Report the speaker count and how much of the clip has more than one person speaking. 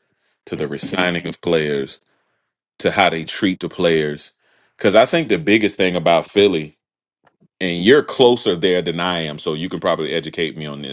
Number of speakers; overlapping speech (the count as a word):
one, no overlap